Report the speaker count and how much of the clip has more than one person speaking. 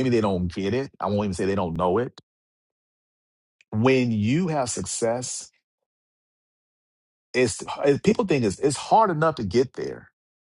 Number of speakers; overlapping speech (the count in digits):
1, no overlap